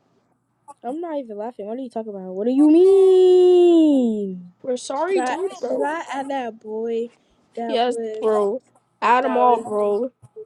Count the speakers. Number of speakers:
3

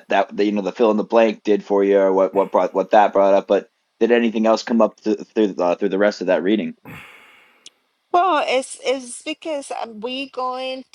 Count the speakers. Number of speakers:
2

